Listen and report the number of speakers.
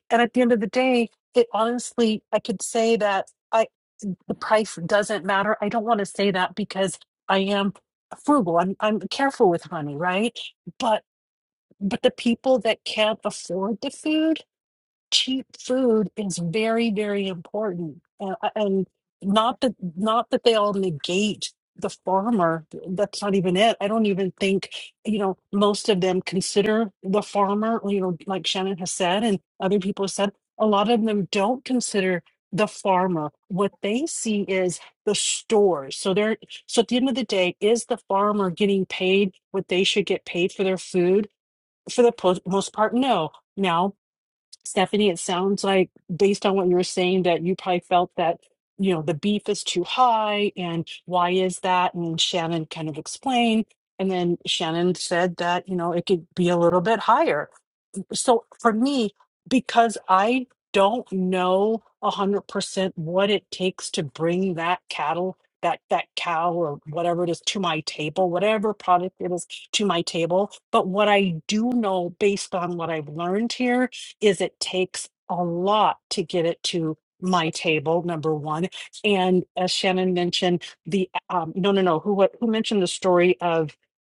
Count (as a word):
one